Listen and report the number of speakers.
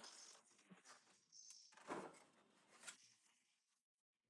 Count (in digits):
0